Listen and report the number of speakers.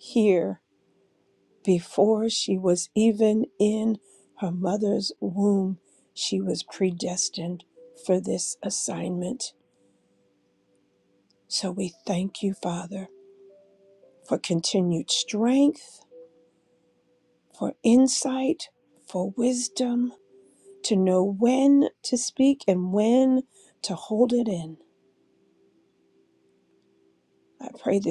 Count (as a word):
one